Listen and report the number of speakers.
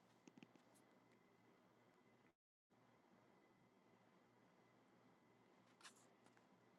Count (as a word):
zero